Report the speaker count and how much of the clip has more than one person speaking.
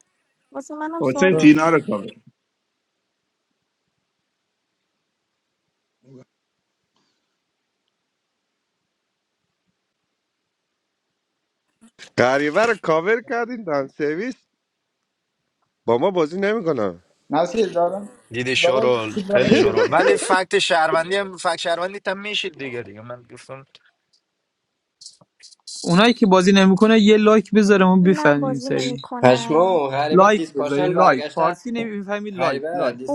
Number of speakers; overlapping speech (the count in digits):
7, about 17%